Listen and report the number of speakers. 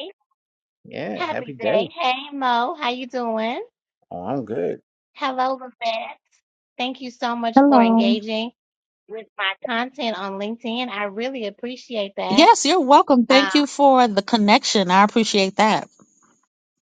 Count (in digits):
3